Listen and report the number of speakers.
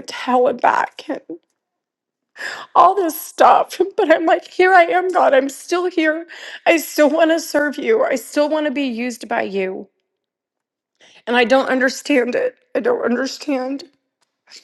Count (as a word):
one